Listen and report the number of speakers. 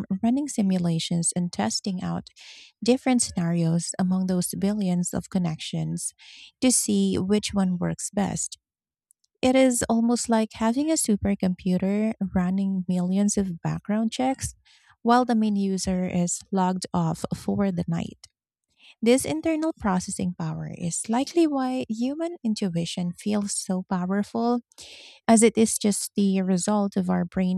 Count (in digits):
1